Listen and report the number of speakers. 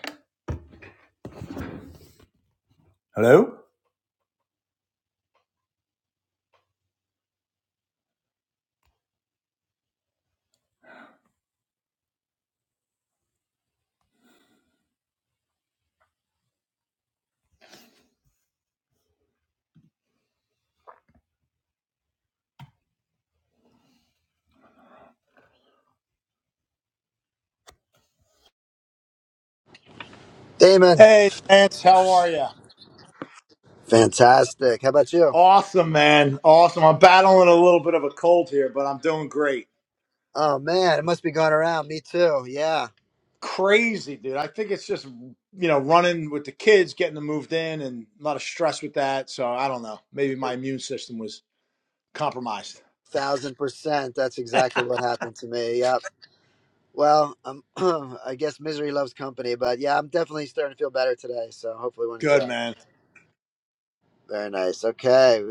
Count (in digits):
2